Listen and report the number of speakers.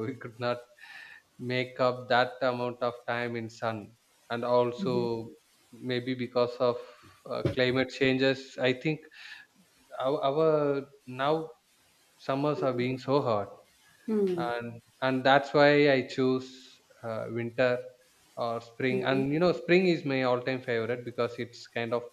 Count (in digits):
2